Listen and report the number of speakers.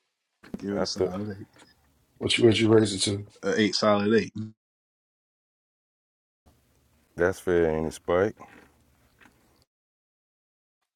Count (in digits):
3